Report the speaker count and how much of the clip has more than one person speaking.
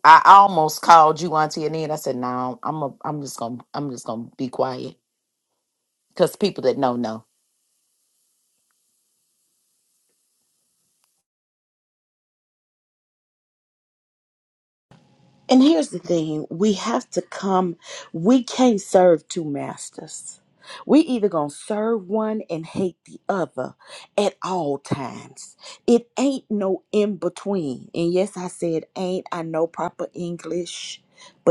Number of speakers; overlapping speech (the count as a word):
two, no overlap